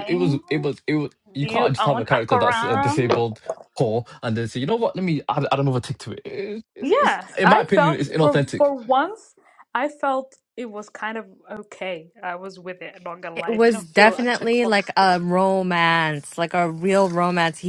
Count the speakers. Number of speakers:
three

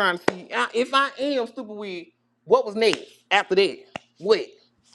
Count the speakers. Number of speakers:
one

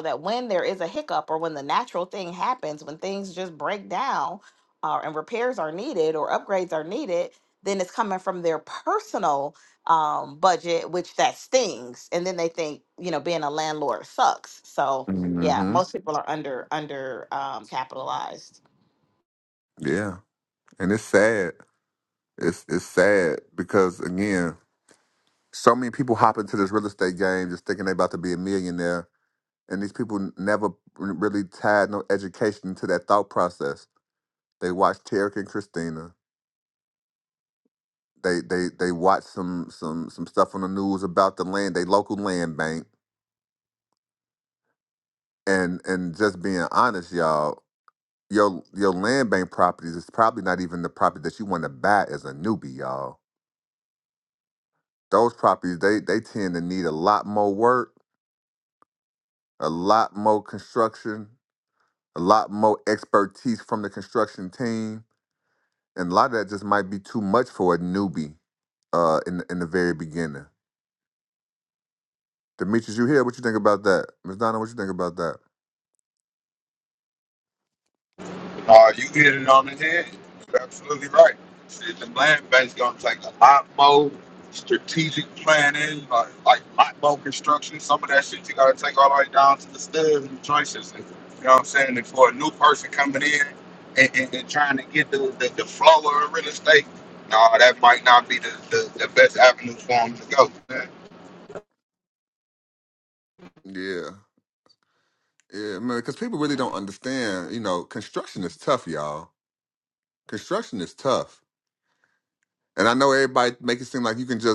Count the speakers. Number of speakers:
three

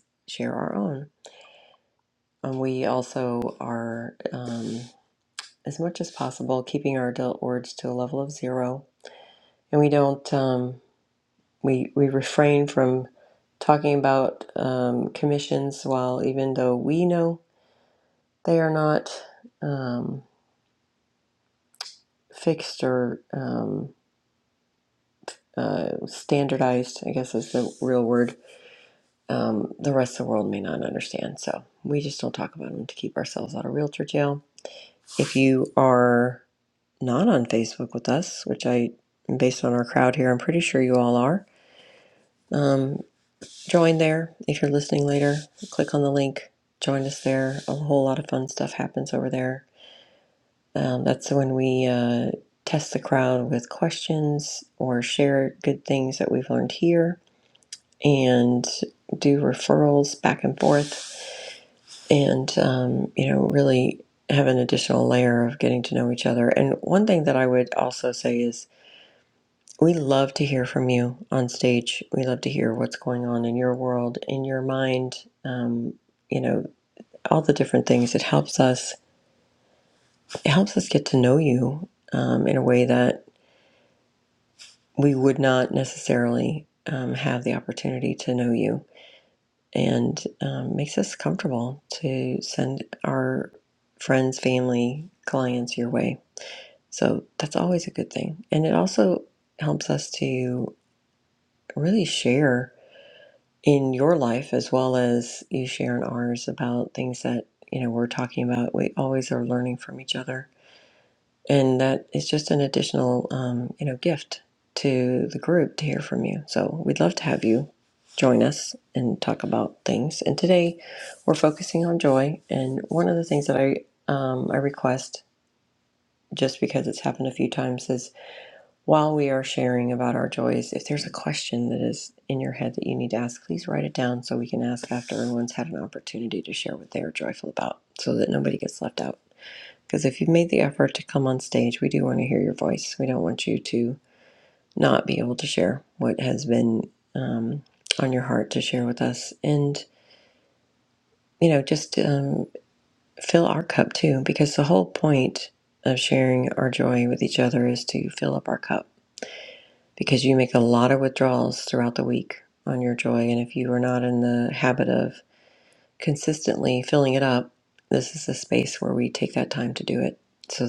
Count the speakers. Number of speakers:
one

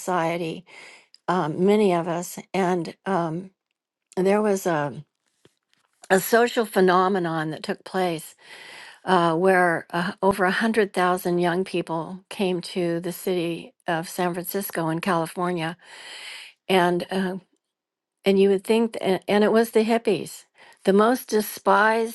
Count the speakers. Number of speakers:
one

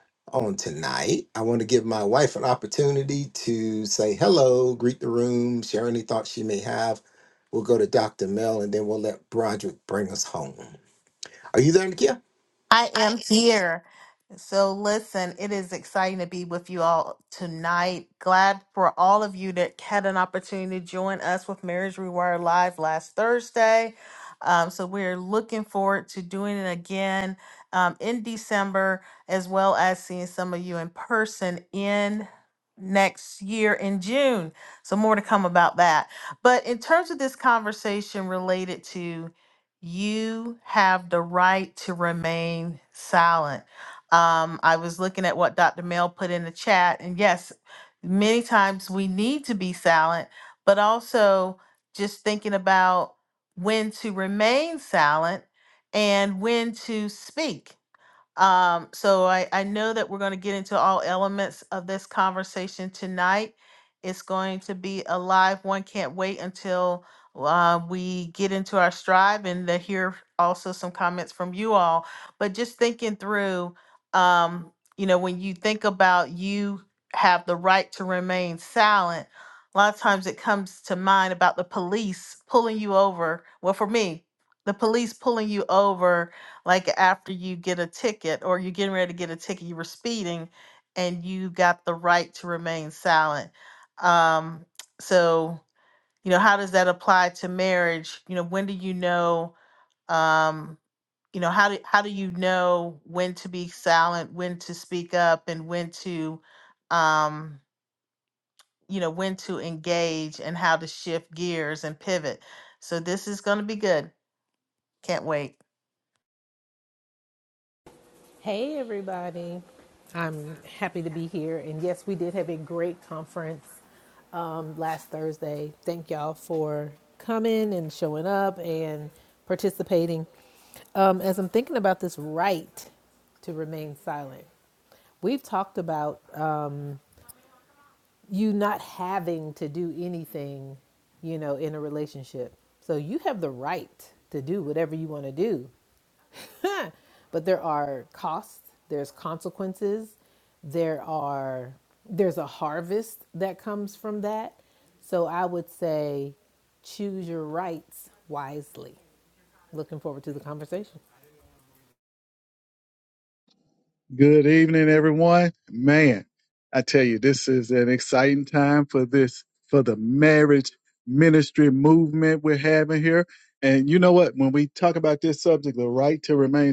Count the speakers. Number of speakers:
four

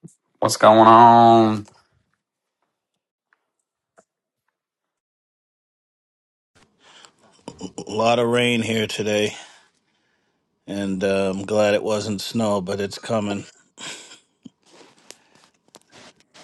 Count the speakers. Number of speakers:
two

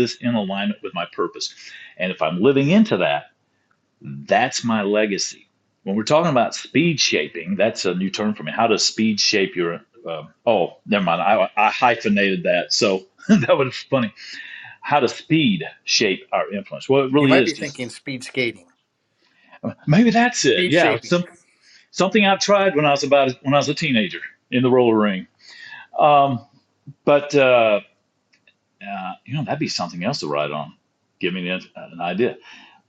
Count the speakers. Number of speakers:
two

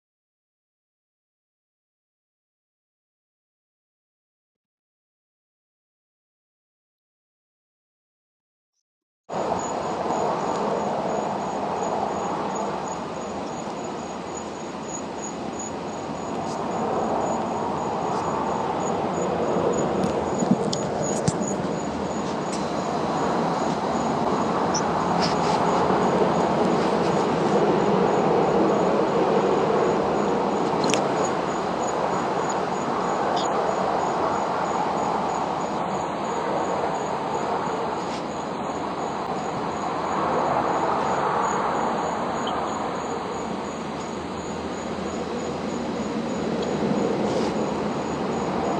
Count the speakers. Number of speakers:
zero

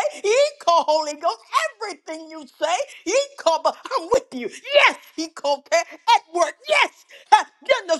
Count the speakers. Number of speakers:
one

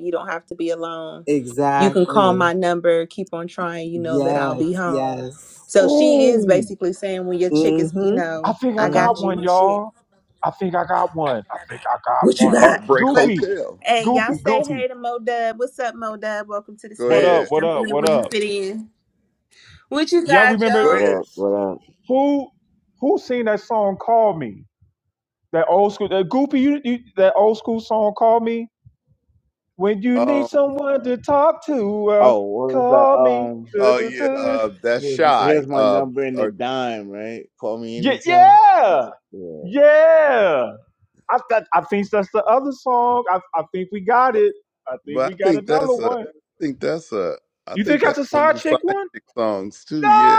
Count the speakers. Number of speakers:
five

